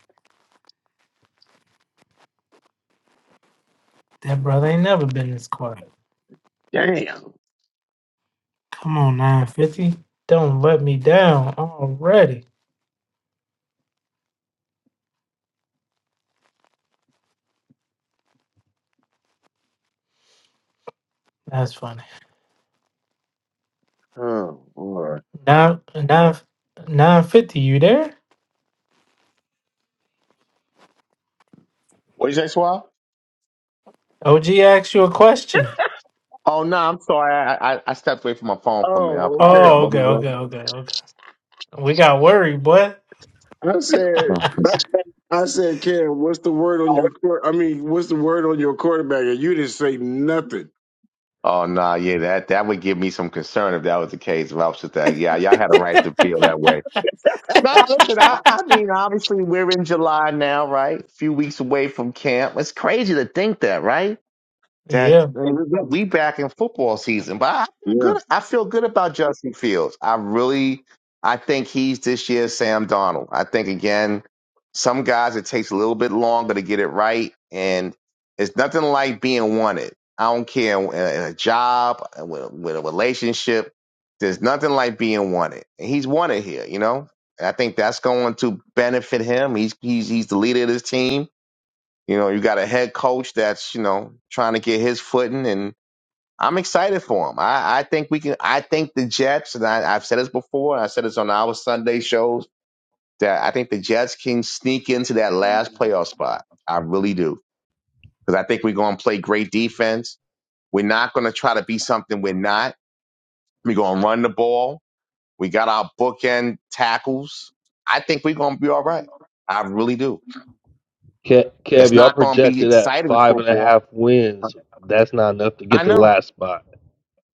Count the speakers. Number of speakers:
four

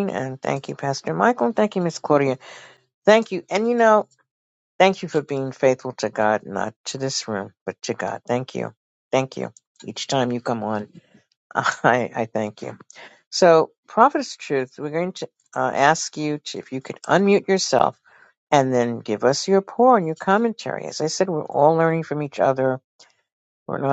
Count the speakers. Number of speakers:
one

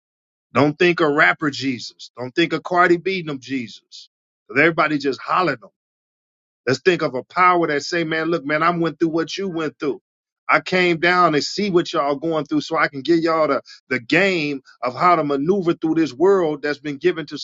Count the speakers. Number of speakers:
one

